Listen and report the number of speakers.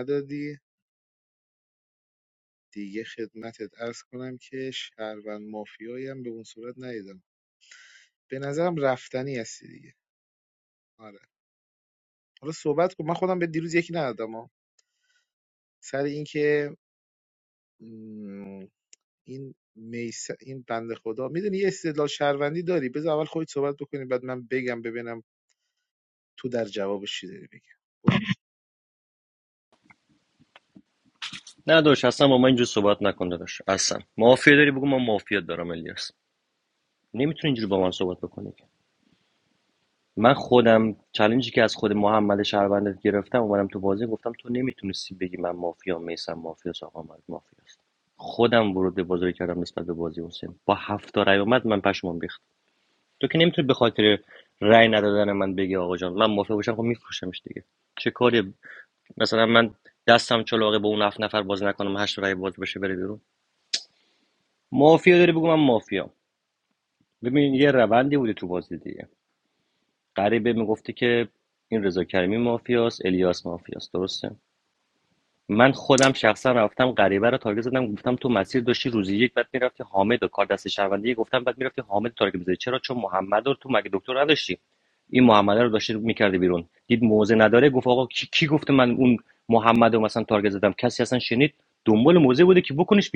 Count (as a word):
two